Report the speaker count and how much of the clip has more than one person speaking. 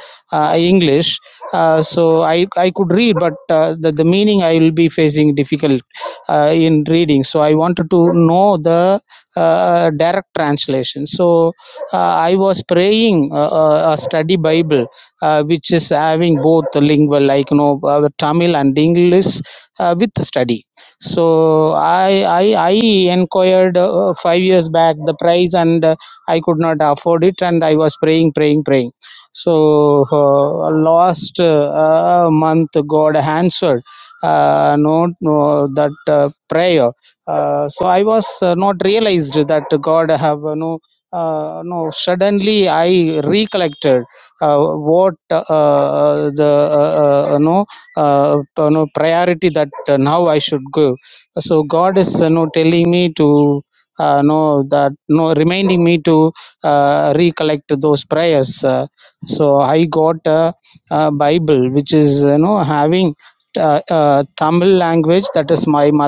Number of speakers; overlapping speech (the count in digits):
1, no overlap